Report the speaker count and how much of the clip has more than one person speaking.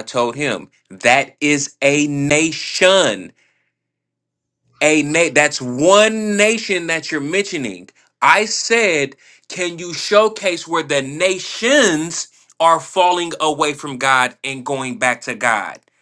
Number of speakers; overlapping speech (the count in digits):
1, no overlap